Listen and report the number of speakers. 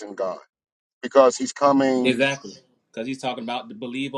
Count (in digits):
2